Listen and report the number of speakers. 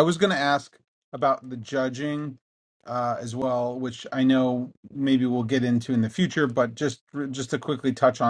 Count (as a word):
one